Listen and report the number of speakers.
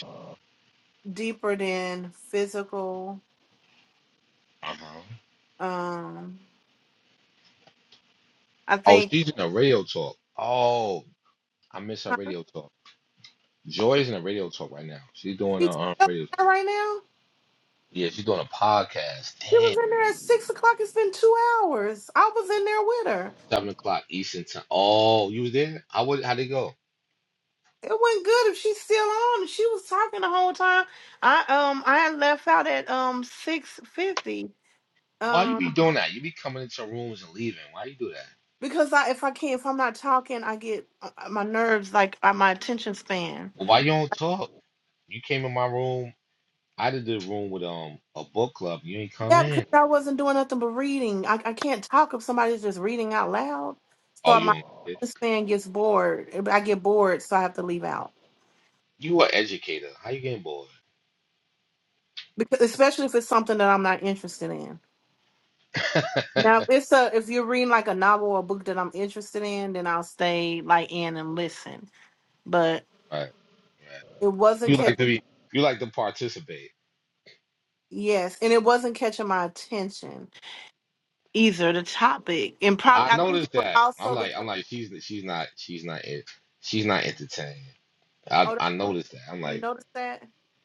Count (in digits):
2